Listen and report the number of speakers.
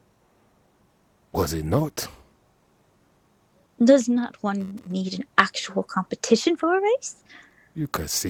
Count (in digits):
2